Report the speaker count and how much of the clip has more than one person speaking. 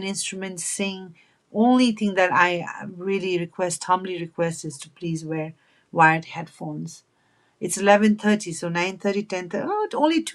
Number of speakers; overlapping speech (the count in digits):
1, no overlap